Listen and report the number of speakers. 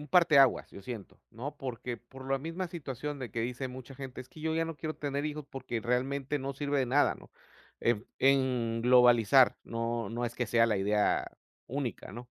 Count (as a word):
one